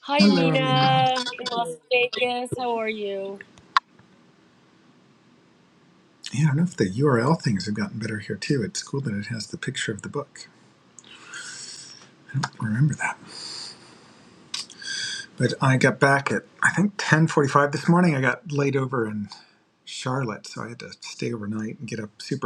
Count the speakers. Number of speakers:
two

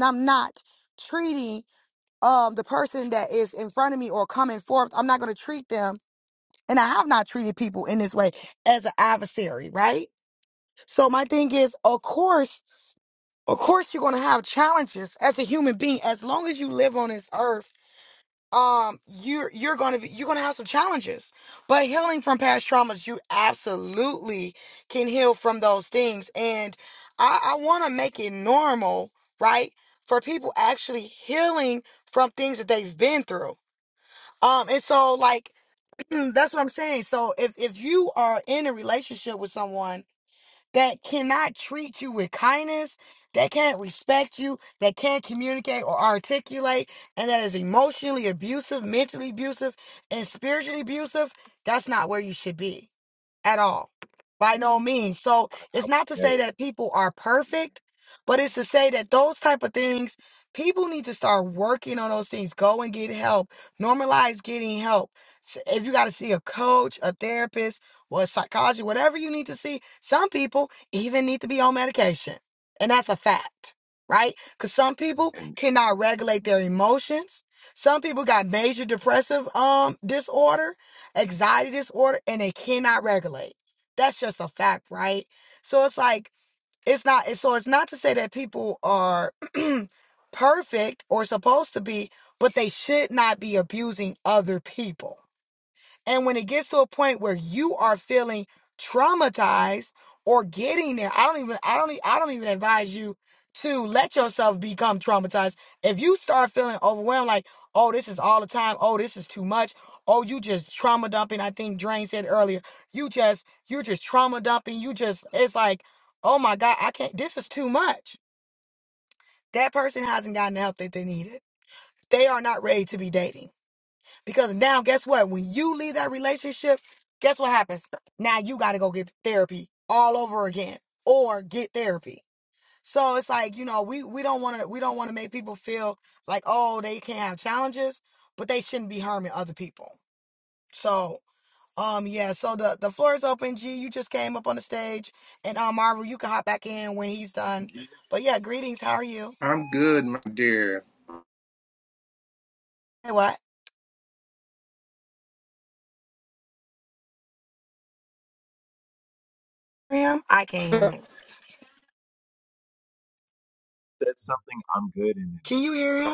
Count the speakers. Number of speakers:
three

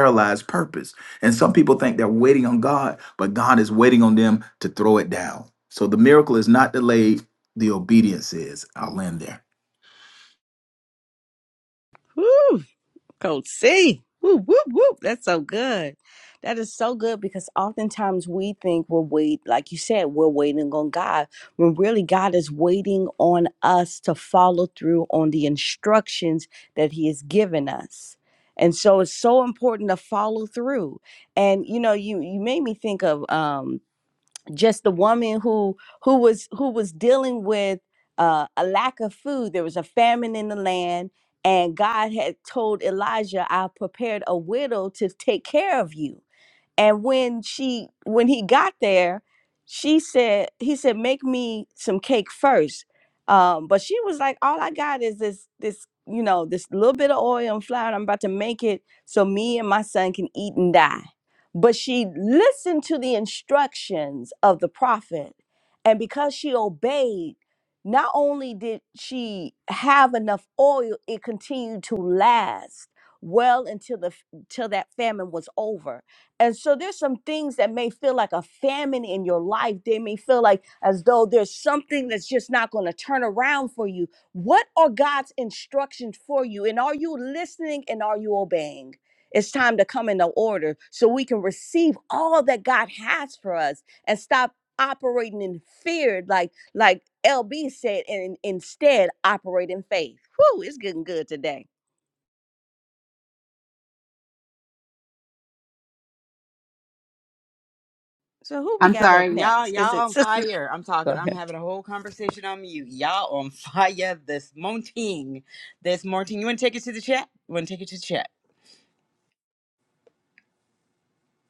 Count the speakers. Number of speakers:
three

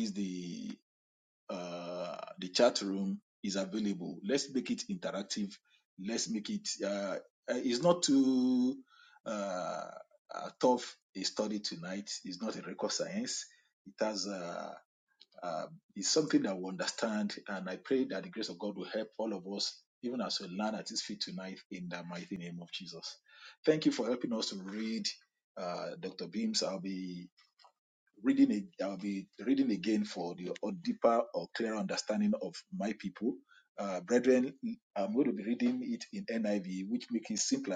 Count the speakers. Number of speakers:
one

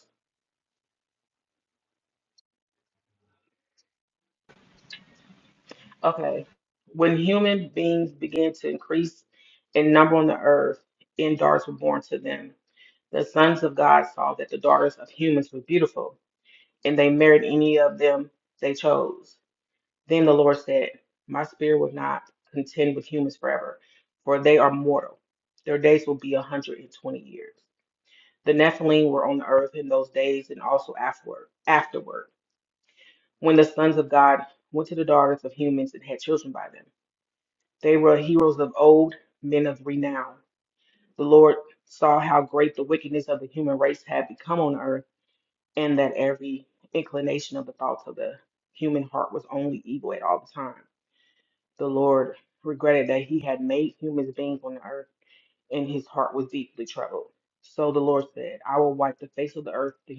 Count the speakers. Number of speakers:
one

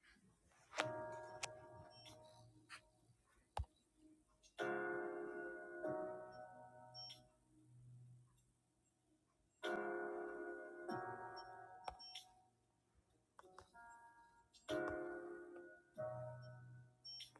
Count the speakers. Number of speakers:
zero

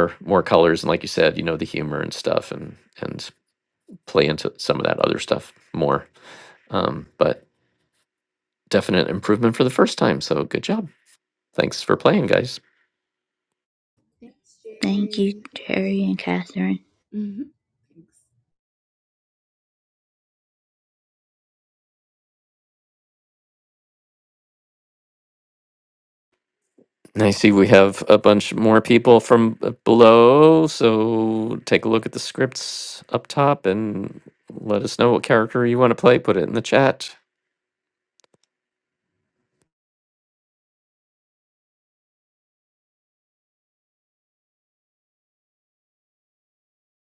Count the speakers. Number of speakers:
three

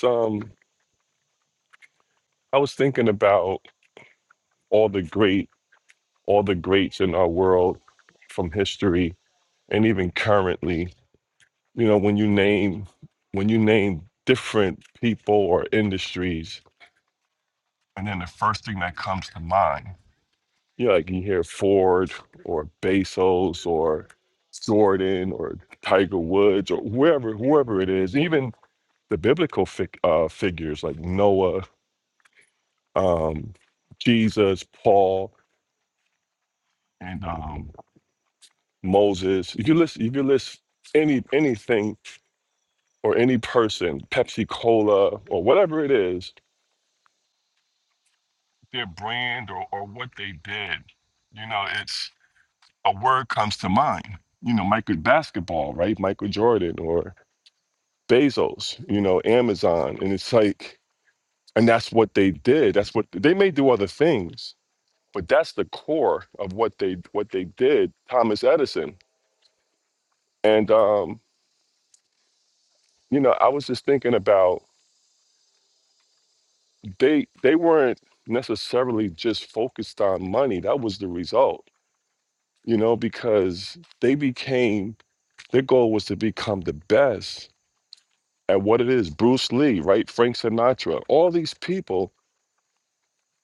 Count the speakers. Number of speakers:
one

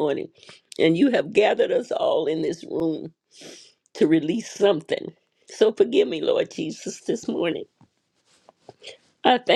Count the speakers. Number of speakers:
one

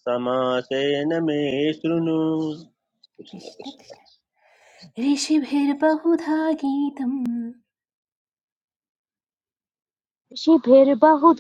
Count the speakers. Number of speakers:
three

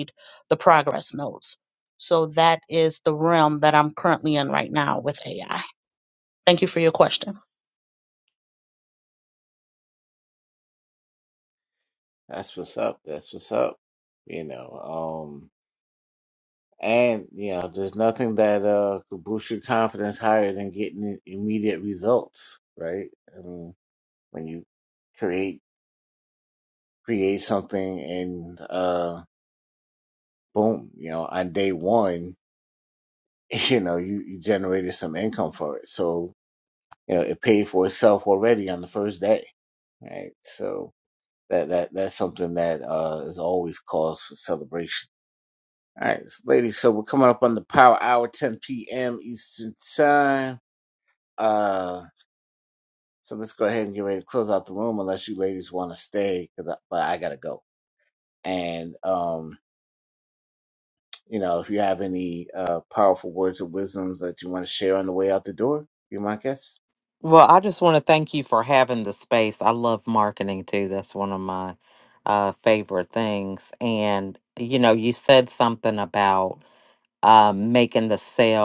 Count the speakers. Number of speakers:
three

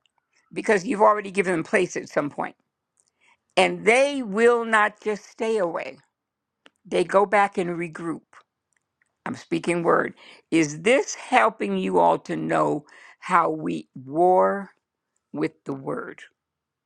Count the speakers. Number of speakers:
one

